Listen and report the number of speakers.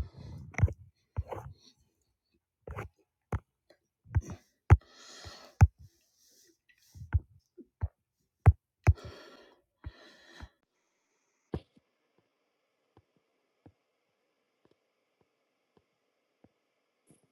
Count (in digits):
0